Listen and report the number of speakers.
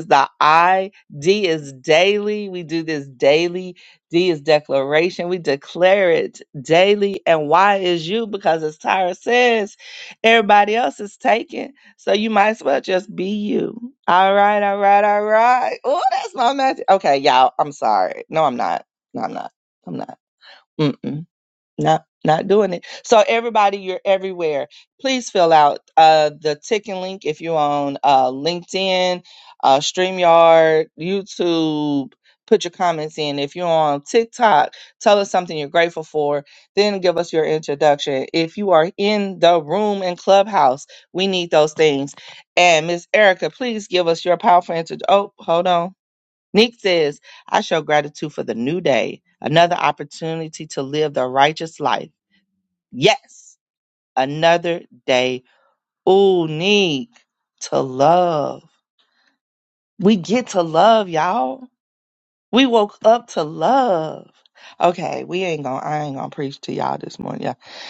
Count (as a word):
one